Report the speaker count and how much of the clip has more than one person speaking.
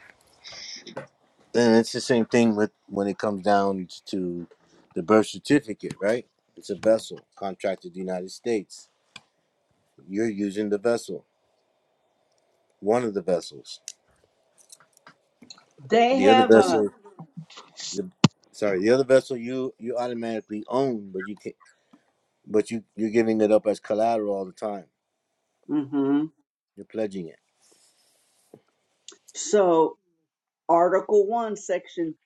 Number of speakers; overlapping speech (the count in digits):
2, about 2%